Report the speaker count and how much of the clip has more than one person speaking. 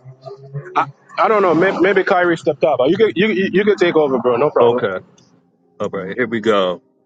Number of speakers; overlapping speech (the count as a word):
two, about 4%